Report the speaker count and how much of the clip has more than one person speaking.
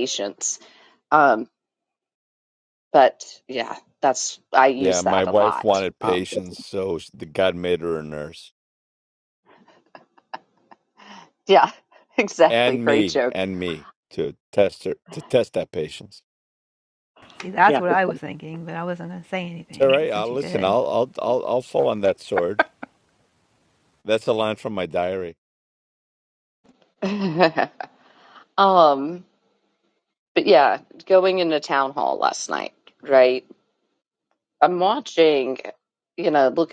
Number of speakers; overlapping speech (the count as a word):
three, about 8%